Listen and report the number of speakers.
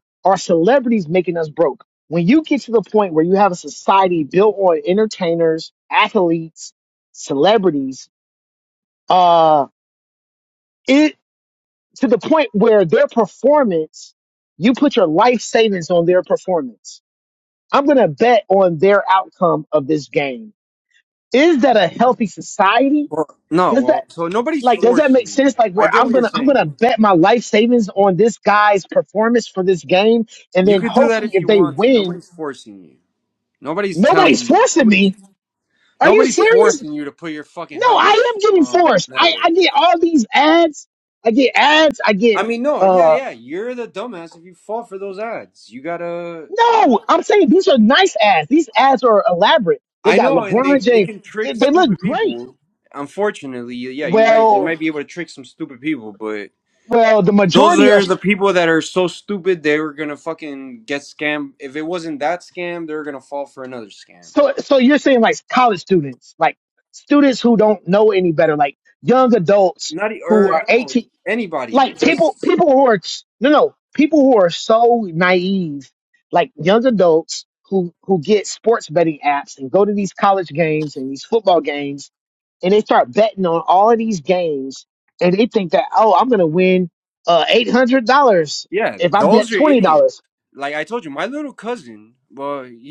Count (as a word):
two